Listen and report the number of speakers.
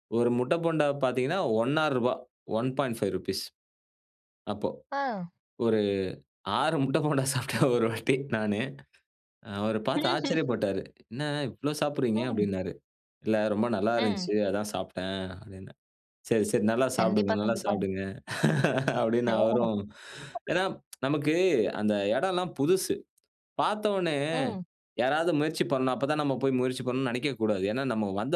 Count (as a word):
two